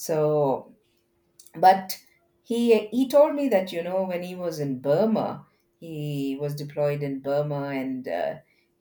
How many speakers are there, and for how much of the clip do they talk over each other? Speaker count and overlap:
one, no overlap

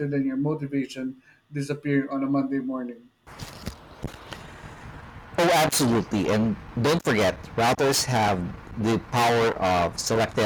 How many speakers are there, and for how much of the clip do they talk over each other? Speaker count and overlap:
two, no overlap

